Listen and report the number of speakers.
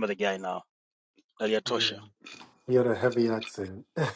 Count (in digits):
2